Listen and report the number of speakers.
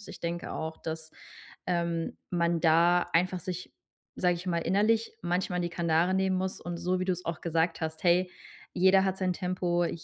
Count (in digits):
1